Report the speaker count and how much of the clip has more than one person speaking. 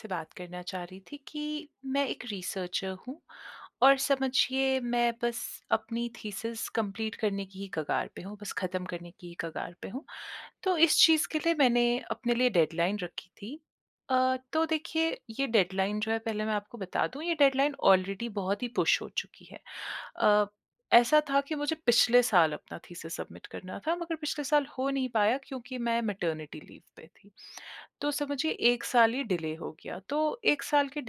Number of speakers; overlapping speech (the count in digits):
1, no overlap